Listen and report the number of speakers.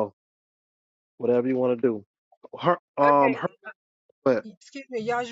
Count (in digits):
2